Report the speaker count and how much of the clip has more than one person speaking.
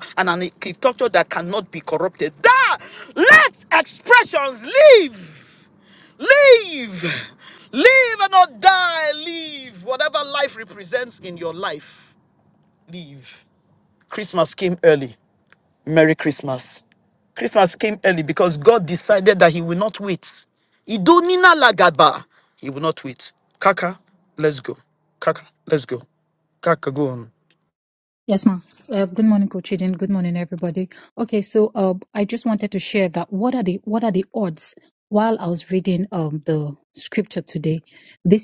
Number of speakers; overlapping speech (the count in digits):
2, no overlap